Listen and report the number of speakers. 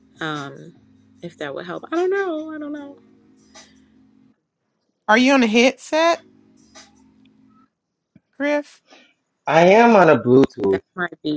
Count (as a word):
three